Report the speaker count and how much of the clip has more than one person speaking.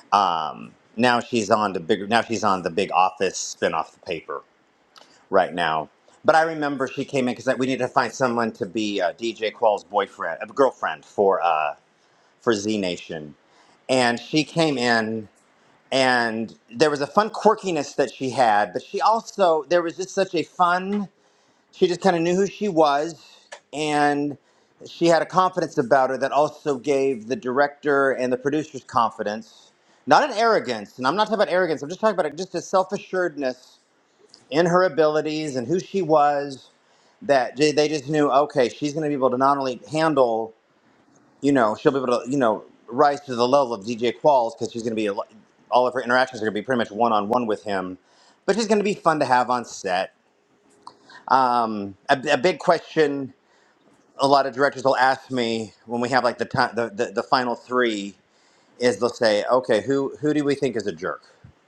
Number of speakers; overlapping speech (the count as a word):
one, no overlap